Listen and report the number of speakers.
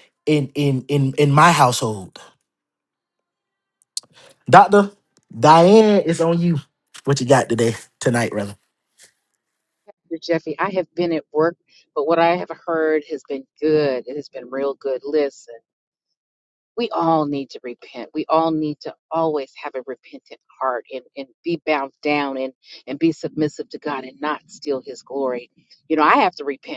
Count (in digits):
2